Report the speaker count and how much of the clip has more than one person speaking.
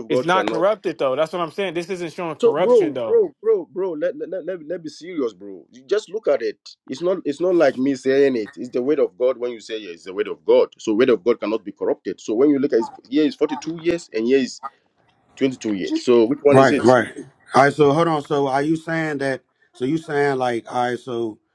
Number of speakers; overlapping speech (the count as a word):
three, about 7%